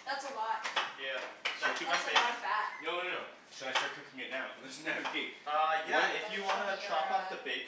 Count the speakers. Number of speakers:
3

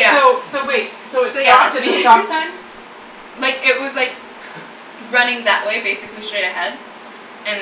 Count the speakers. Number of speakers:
2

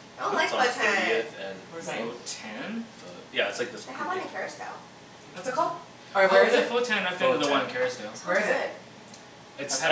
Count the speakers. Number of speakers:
4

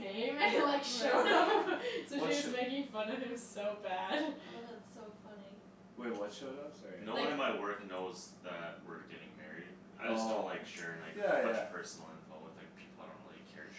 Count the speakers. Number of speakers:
4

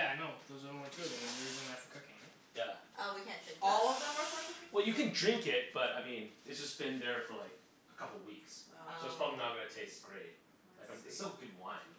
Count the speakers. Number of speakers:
4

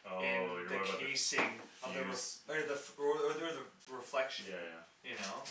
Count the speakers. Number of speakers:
2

